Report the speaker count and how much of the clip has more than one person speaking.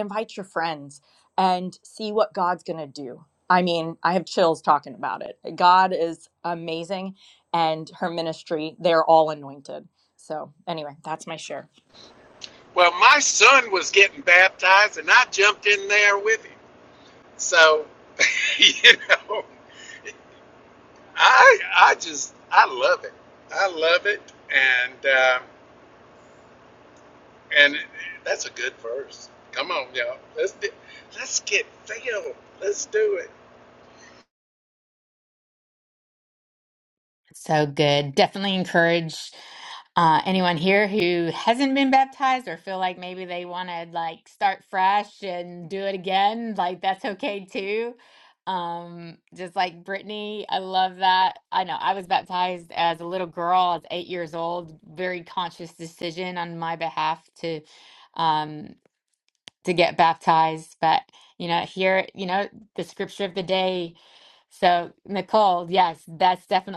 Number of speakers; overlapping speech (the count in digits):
3, no overlap